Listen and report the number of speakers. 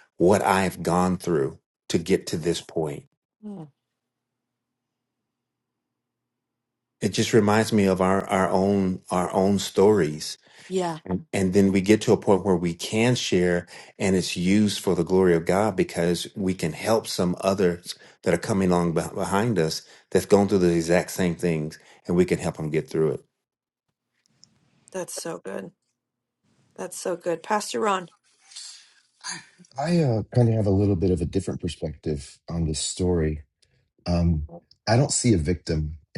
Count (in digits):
3